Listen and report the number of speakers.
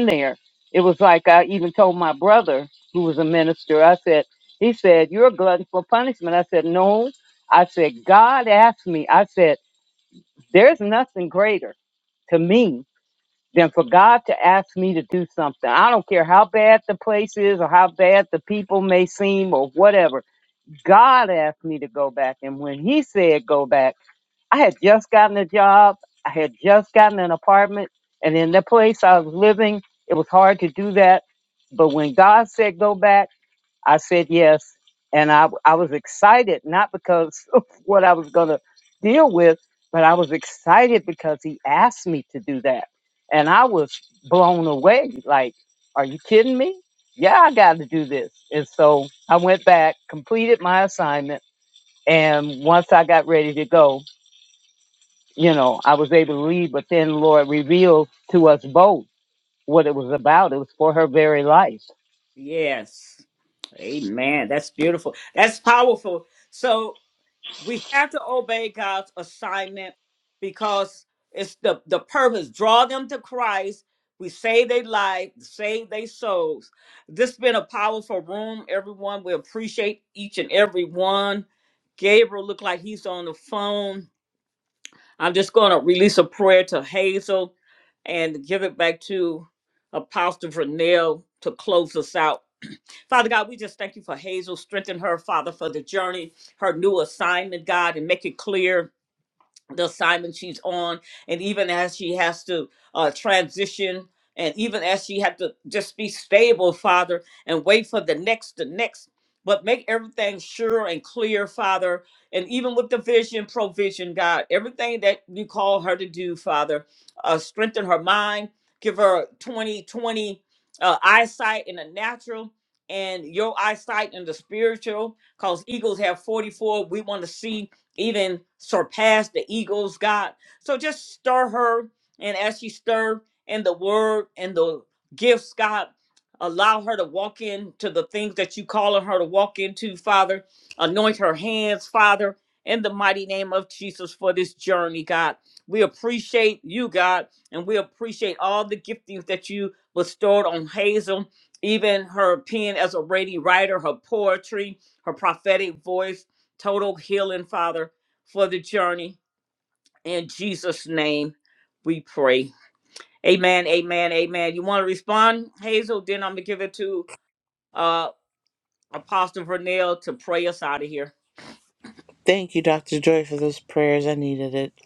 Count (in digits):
3